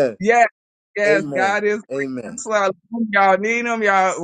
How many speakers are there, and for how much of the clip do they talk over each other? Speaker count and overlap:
2, about 14%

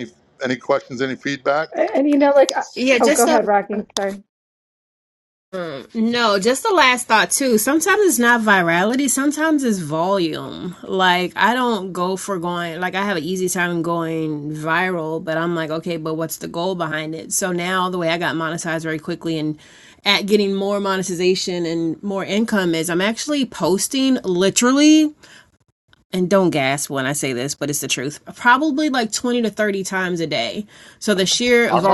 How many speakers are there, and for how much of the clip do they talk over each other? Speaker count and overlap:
3, about 3%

